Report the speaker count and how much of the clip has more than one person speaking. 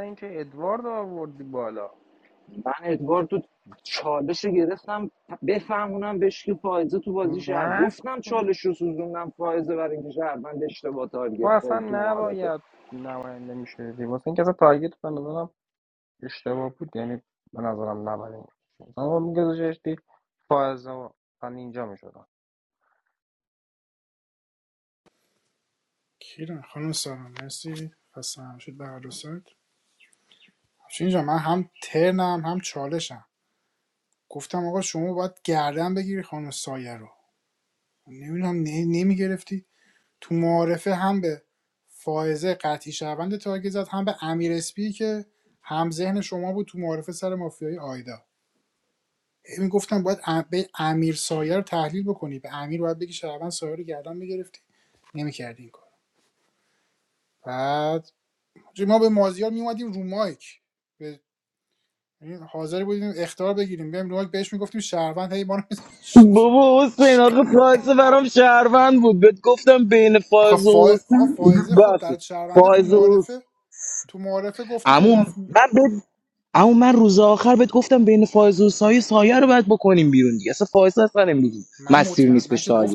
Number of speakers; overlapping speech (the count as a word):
four, about 7%